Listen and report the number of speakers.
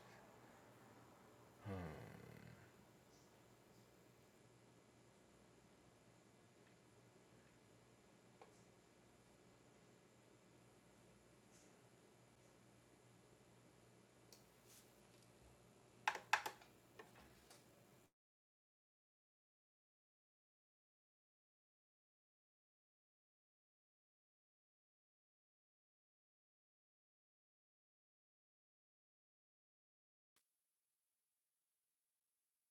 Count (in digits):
0